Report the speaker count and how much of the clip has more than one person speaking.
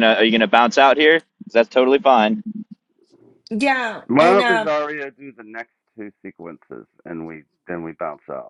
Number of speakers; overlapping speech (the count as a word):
three, about 7%